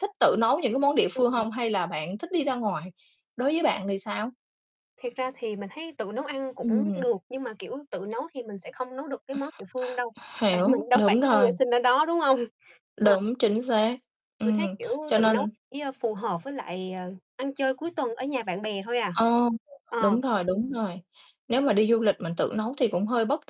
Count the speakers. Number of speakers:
2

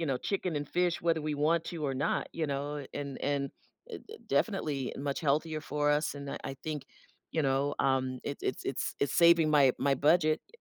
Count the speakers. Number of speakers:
1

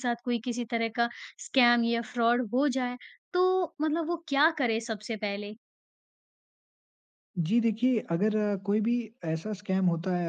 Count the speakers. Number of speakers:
2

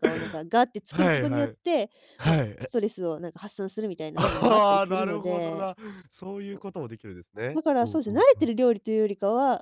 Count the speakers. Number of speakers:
2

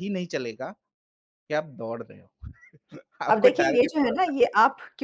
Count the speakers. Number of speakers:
2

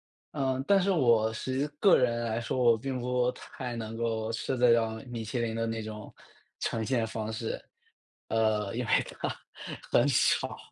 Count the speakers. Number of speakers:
1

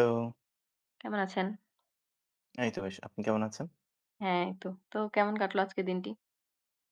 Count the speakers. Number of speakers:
2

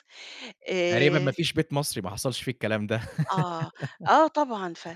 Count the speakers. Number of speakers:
2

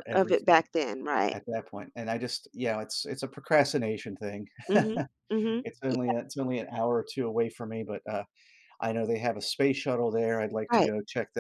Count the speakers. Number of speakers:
2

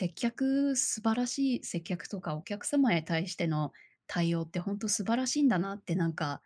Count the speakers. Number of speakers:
1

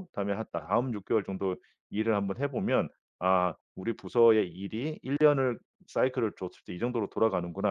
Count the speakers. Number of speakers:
1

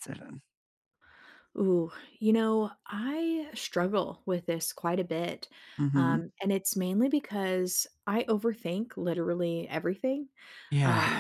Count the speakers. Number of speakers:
2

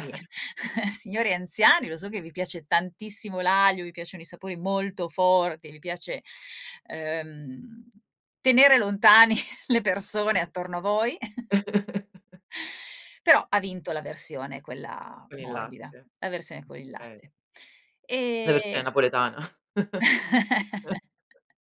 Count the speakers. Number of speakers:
2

